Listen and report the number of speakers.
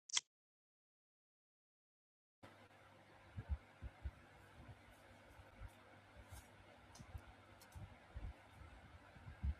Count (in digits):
0